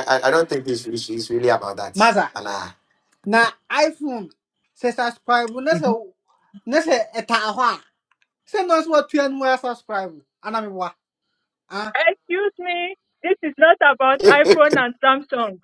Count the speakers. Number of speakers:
three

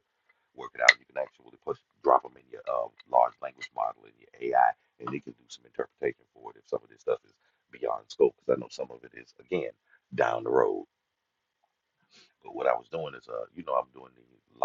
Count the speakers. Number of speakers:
one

